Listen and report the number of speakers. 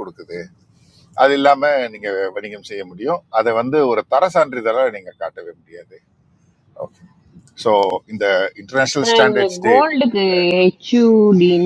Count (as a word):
two